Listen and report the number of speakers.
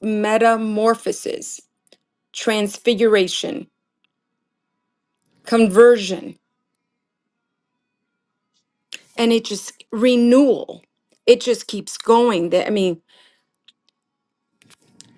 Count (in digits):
1